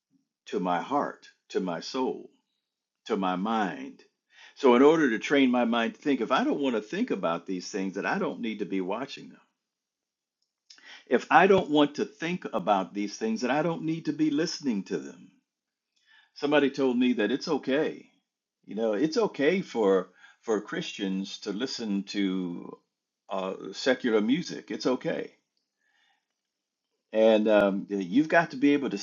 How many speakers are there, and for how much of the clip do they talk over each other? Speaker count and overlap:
1, no overlap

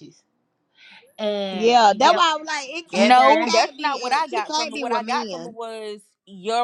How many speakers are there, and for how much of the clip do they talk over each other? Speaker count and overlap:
3, about 49%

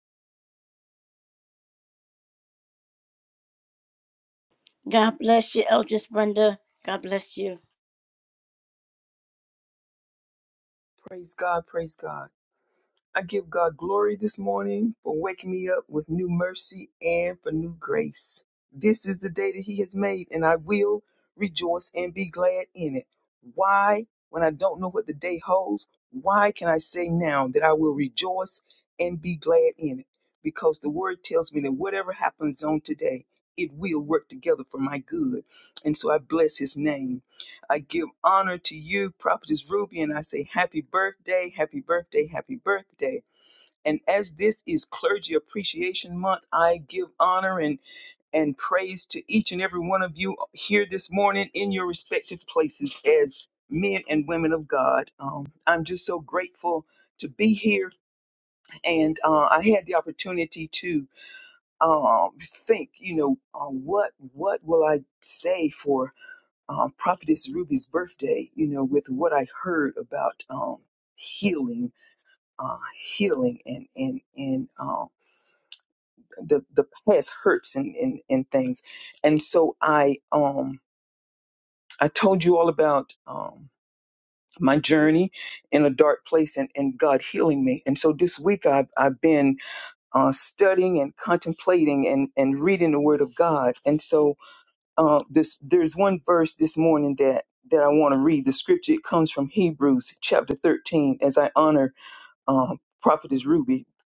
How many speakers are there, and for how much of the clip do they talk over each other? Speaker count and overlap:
2, no overlap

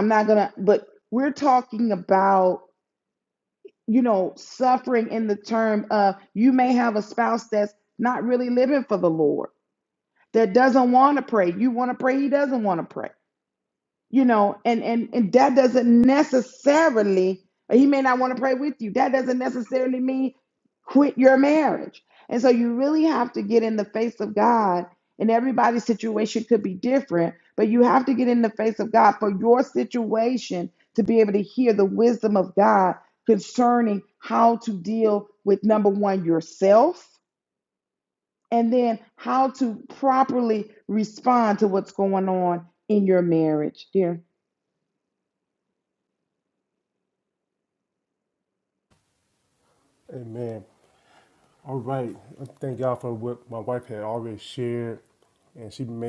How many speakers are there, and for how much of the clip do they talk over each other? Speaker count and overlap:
2, no overlap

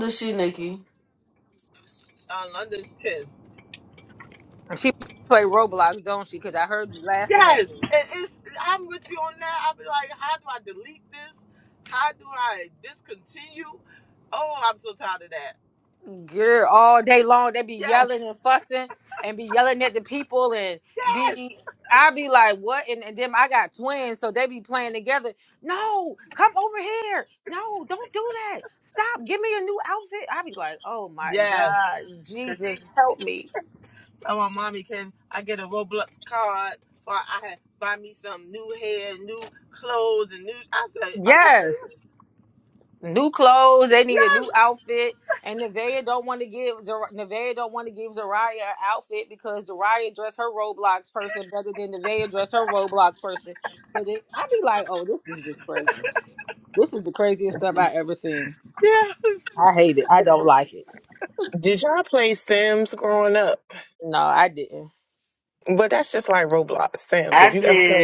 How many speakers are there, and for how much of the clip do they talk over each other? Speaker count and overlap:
4, about 5%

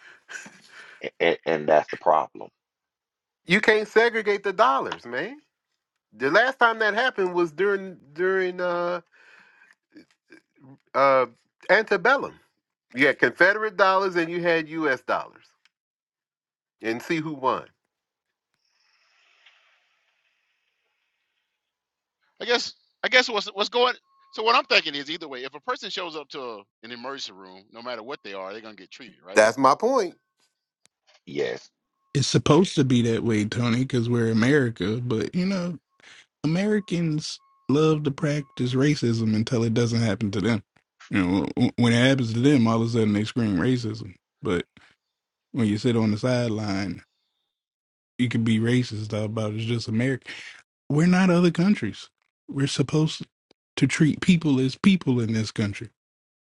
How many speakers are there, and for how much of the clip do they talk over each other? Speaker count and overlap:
4, under 1%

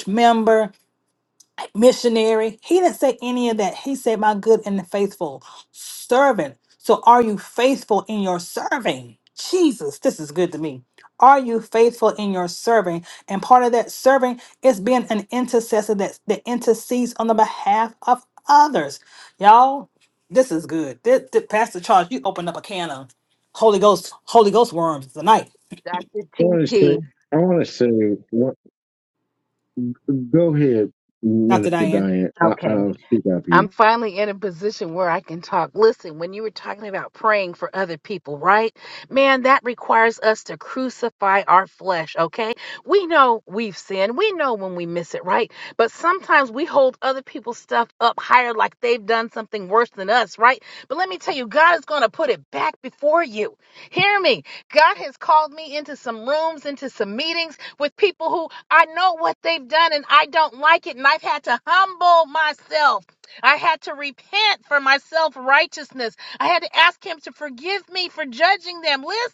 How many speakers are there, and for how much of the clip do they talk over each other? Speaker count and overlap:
3, about 2%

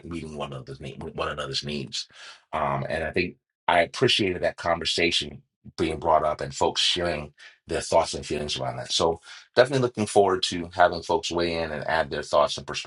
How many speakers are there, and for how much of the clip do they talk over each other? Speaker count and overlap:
1, no overlap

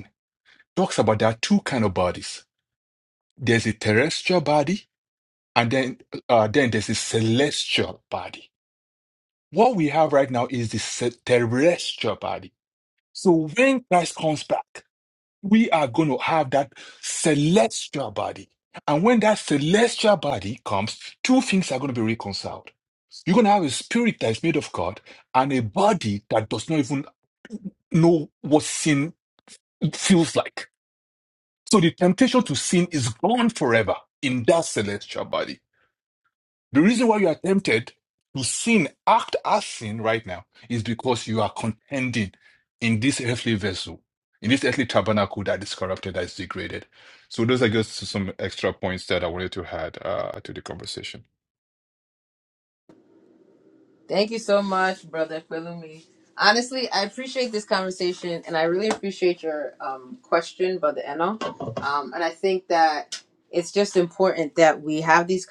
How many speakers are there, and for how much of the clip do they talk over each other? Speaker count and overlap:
2, no overlap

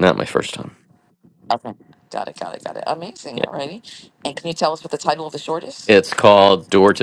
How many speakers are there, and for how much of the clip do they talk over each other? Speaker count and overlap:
2, about 1%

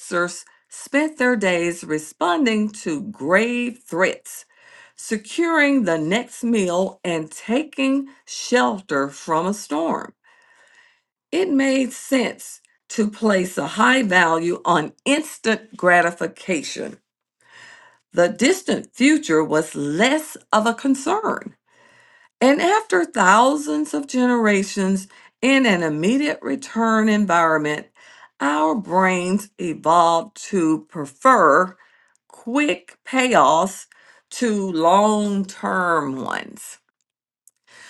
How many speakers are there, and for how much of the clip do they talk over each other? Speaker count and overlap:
1, no overlap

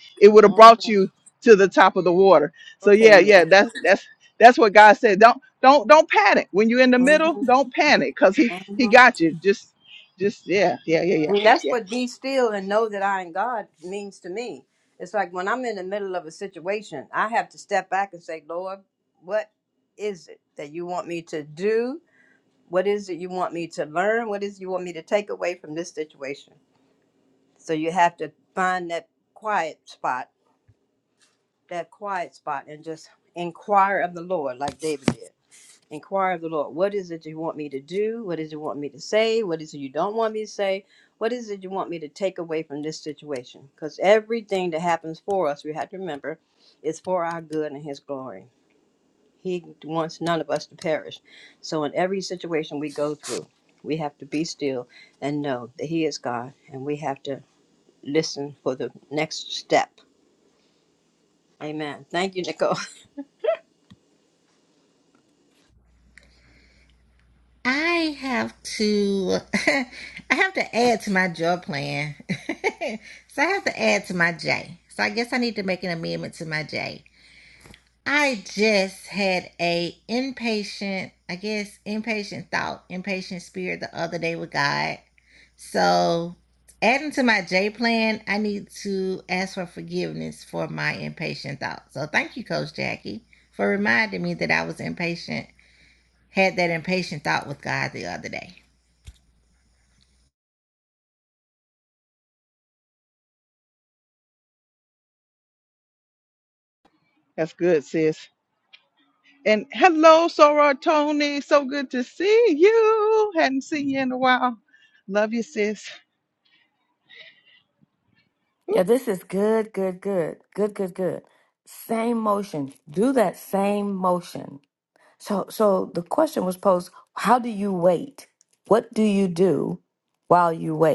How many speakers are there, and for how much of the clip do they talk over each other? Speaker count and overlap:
4, about 2%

